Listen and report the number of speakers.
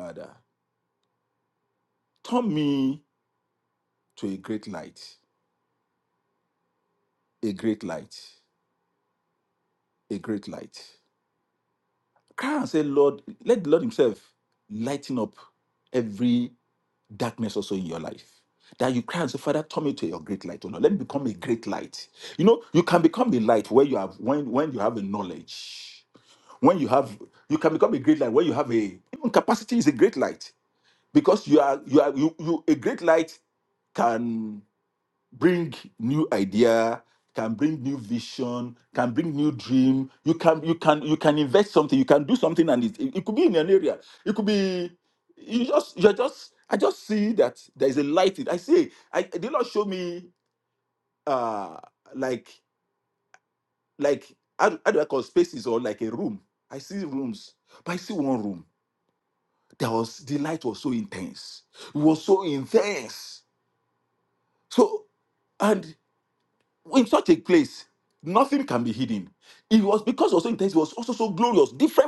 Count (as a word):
one